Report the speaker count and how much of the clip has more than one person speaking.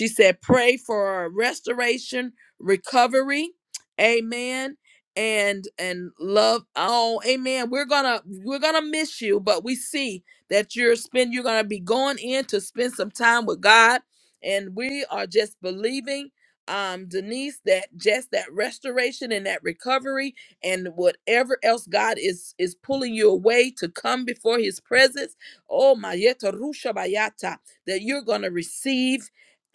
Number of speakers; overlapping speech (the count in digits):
1, no overlap